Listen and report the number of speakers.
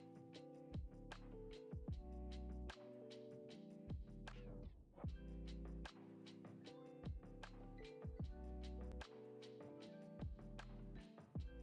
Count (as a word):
zero